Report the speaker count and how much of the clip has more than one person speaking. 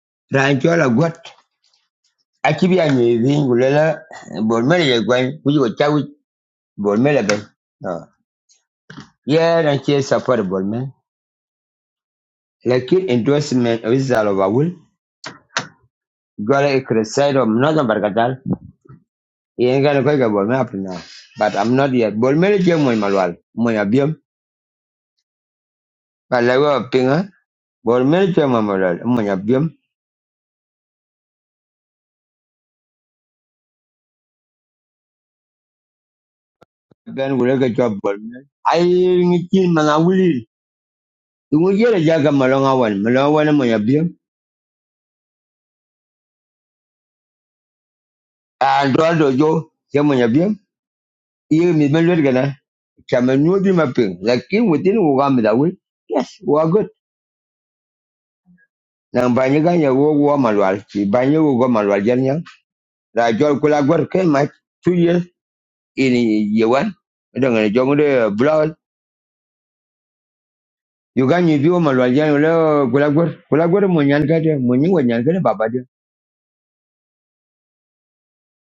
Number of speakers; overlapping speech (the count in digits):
1, no overlap